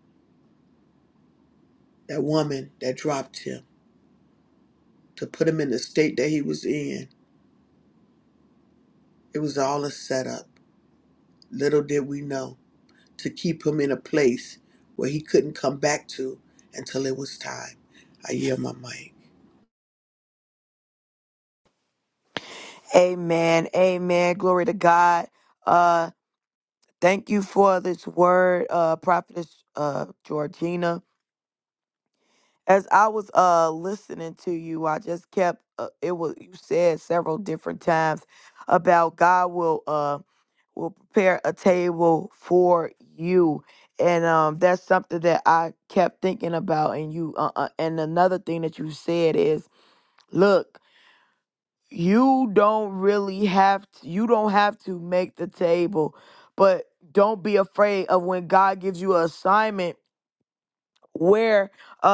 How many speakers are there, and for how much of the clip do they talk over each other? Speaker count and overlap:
two, no overlap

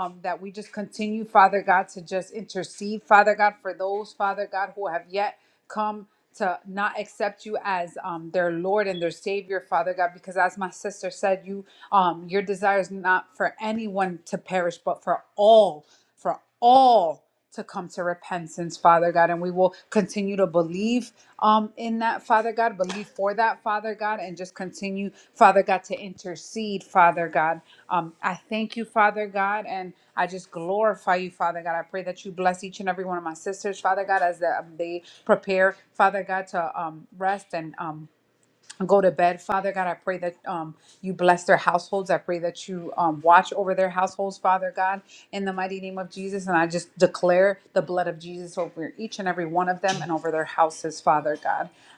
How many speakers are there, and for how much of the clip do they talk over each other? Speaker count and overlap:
one, no overlap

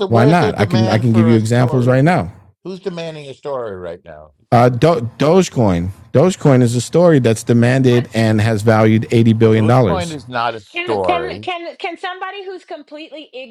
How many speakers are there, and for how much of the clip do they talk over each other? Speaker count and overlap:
three, about 25%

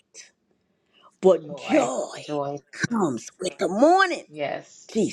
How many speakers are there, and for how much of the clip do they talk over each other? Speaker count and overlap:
two, about 18%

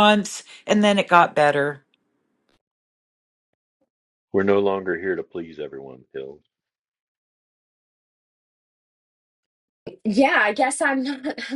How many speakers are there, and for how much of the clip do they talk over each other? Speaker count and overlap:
three, no overlap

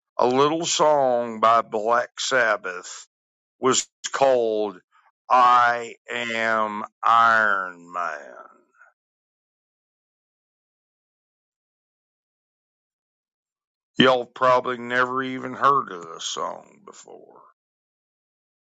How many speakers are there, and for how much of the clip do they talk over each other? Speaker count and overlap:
one, no overlap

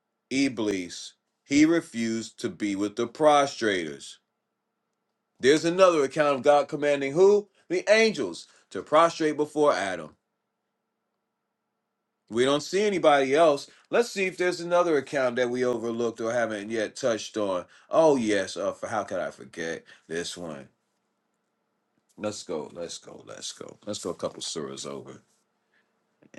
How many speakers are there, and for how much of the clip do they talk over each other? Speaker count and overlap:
one, no overlap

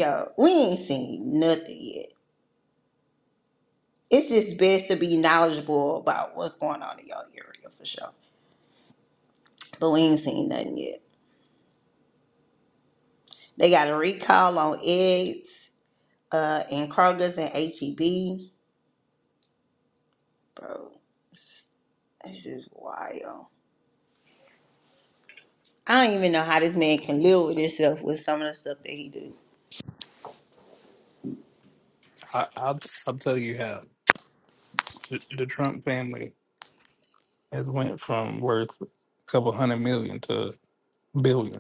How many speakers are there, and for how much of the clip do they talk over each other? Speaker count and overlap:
two, no overlap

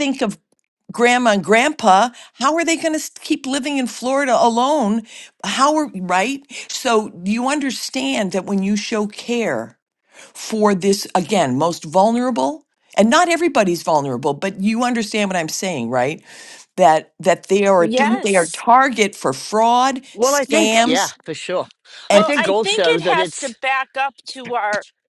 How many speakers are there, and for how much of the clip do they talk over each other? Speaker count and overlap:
three, about 11%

